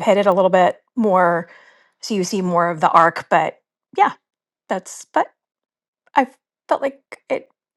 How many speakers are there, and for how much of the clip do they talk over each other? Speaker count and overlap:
one, no overlap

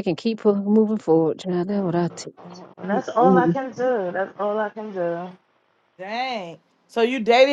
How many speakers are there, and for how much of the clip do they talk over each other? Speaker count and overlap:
three, about 5%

